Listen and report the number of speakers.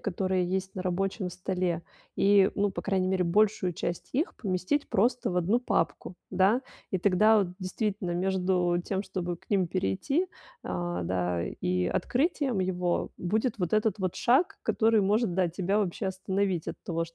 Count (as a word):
one